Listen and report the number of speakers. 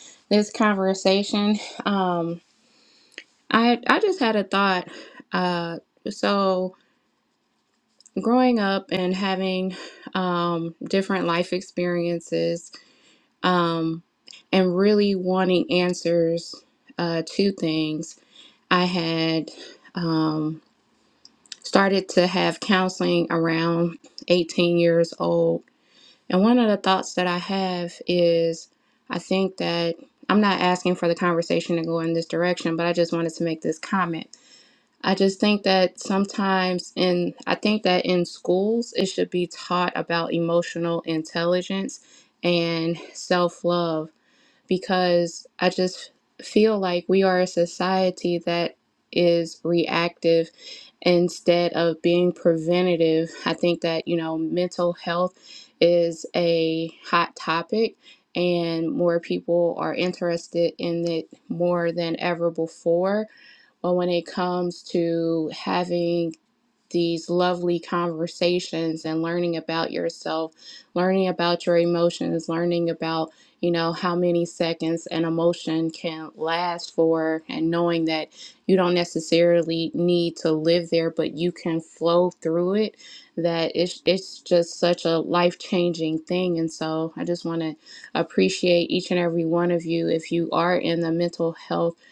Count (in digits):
1